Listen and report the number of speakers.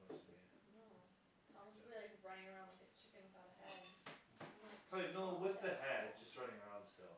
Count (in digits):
2